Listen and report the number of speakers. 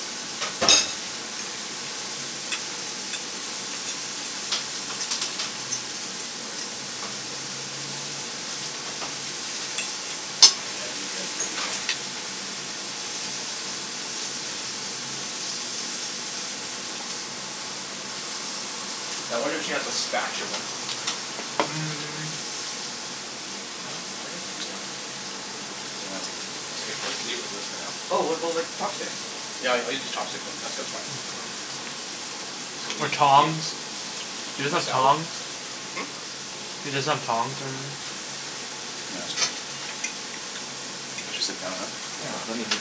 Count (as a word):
three